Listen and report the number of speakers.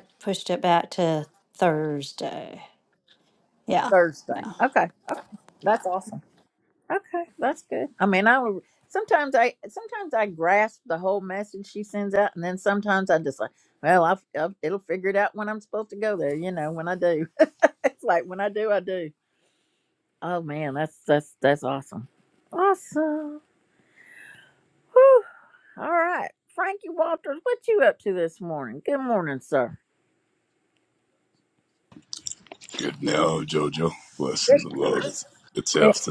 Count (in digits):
3